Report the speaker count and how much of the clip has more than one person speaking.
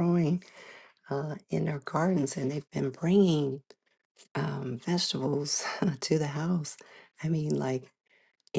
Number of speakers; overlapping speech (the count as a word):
one, no overlap